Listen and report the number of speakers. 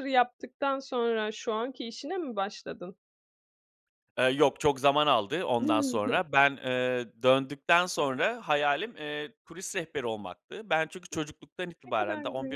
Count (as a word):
two